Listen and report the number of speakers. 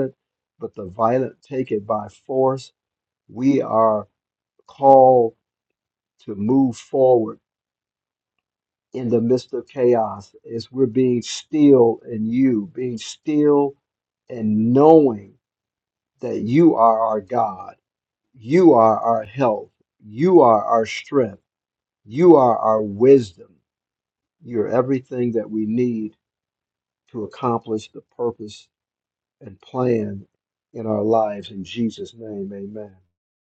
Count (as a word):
one